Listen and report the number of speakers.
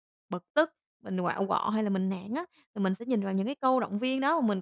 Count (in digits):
1